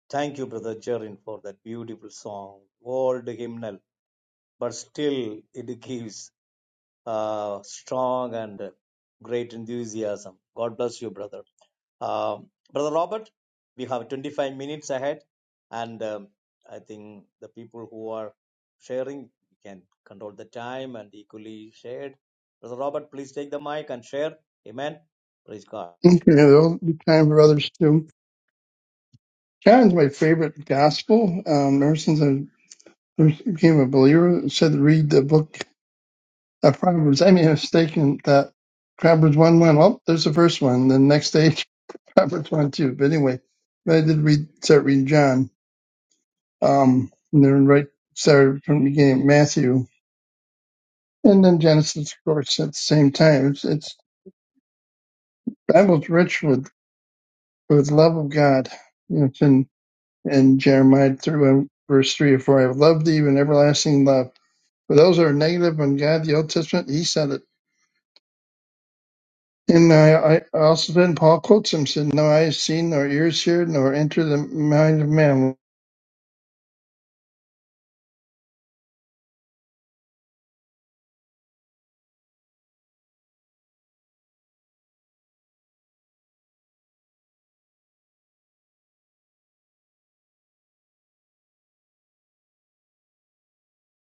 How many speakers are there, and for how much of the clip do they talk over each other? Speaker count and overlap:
2, no overlap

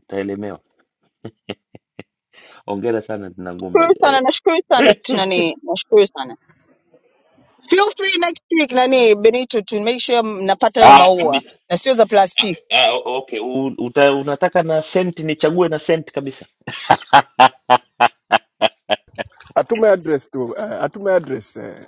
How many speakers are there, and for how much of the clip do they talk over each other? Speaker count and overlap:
3, about 5%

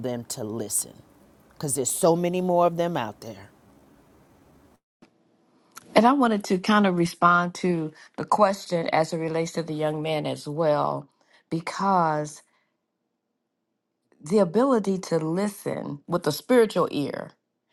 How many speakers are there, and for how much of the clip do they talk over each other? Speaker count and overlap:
2, no overlap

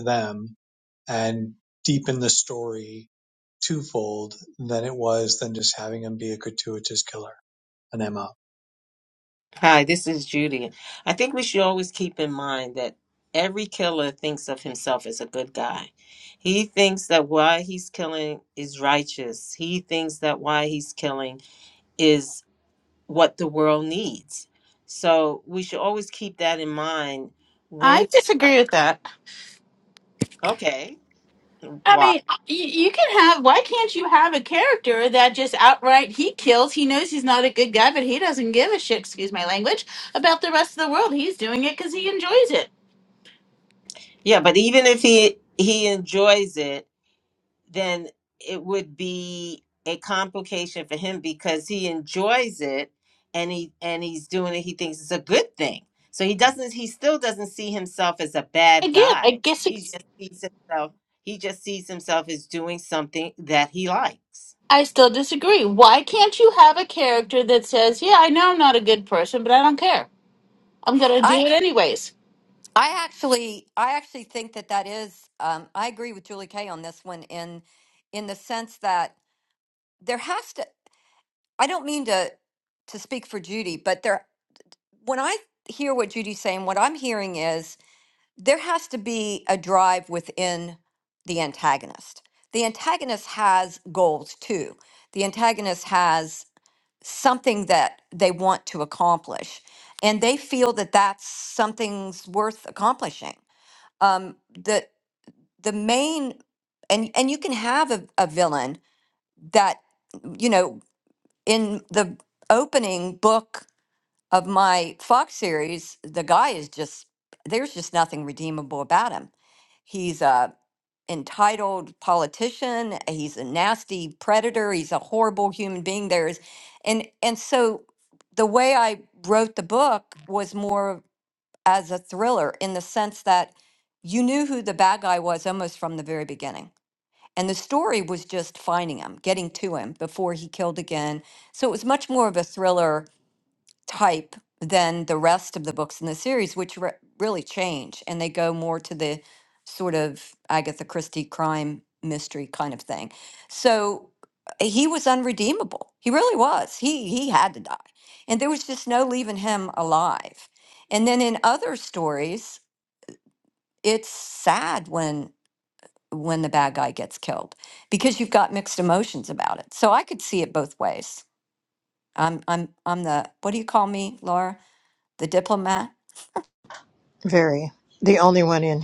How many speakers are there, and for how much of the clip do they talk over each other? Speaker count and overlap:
5, about 1%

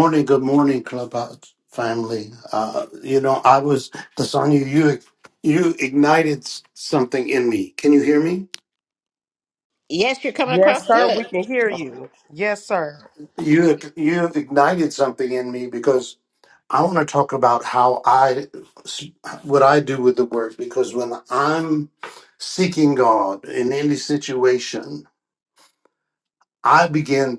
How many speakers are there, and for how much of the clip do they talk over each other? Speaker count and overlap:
3, about 3%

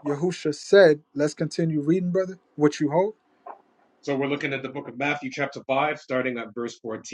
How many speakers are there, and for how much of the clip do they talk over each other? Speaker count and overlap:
2, no overlap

